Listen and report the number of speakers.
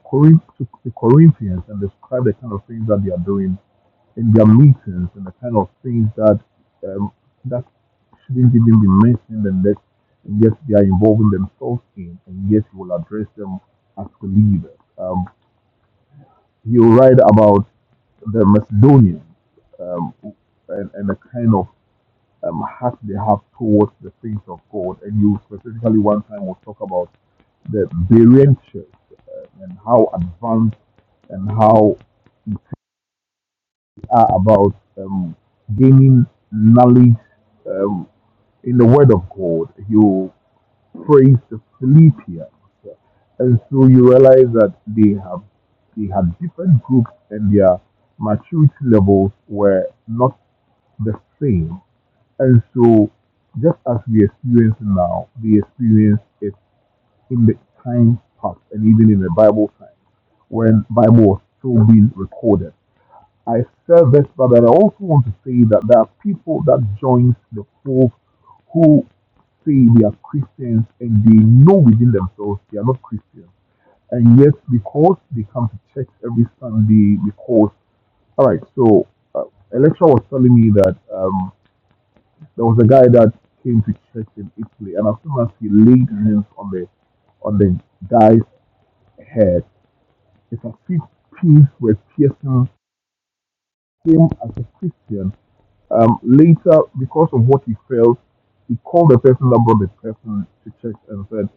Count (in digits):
1